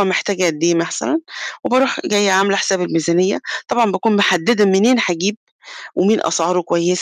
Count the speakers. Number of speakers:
one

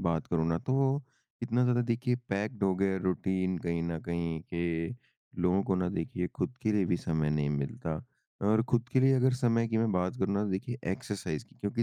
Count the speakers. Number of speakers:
one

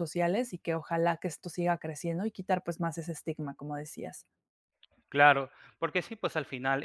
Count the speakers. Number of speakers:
two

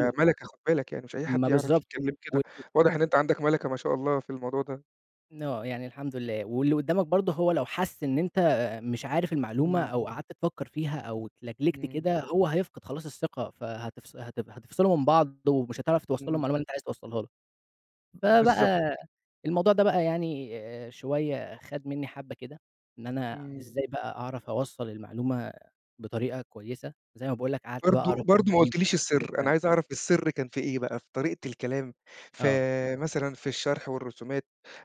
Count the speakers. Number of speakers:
two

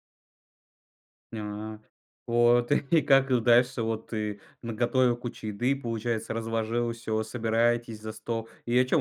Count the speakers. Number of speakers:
one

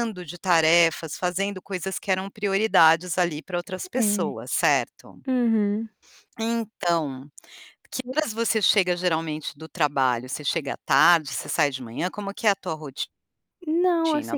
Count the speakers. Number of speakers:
two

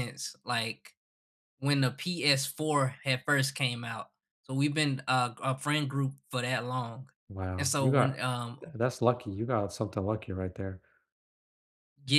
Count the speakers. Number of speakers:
two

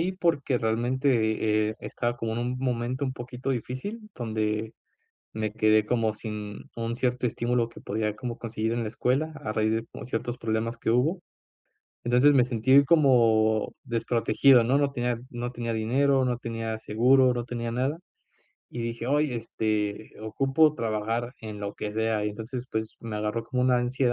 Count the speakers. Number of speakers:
one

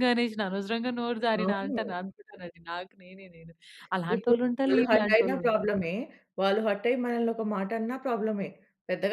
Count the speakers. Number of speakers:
two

